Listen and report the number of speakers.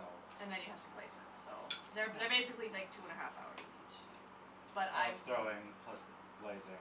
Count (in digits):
2